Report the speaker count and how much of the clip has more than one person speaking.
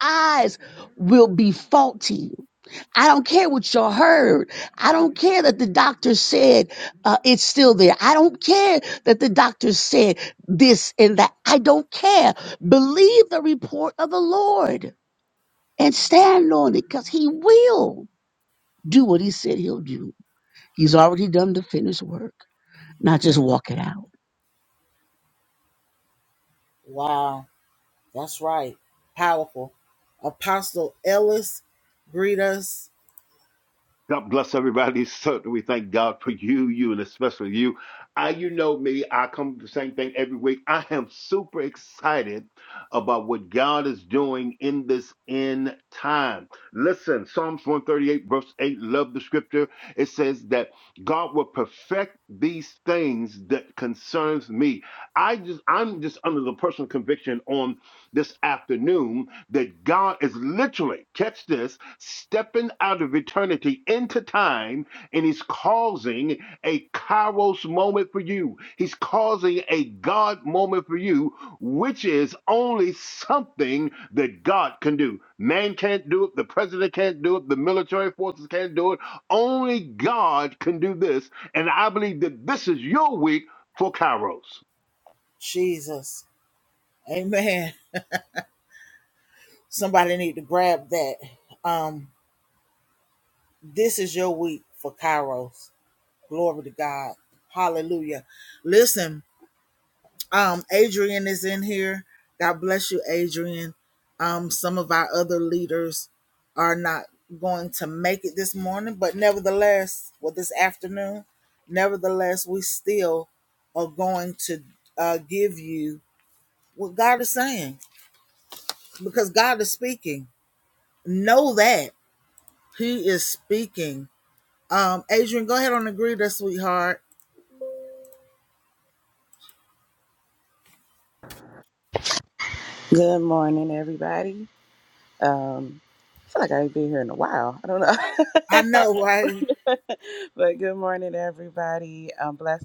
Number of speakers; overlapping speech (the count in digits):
4, no overlap